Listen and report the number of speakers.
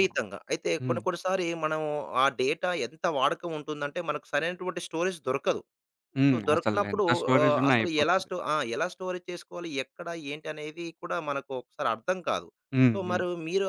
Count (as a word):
two